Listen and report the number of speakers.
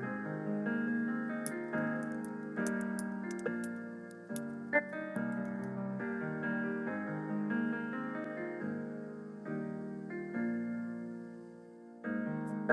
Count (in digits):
0